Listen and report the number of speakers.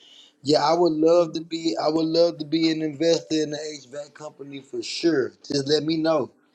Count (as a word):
one